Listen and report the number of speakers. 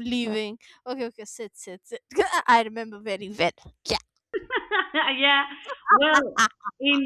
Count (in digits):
2